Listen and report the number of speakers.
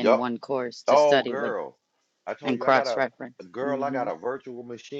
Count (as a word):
two